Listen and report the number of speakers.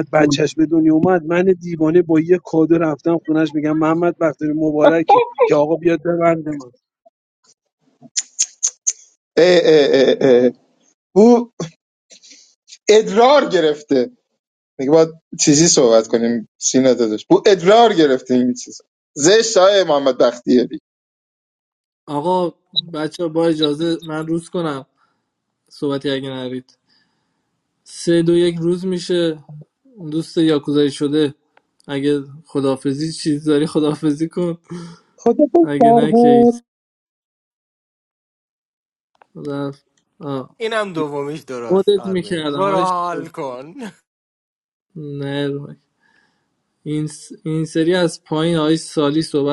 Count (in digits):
4